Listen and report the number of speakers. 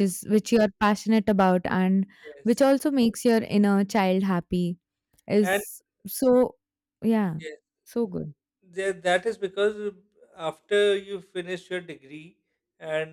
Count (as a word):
two